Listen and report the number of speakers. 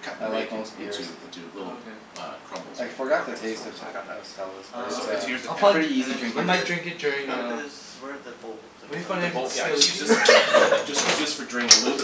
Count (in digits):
4